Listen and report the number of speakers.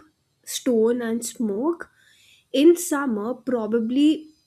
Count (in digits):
1